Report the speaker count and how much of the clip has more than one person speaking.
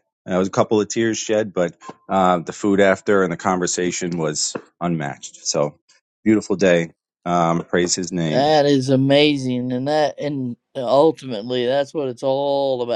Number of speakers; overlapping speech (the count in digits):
2, about 1%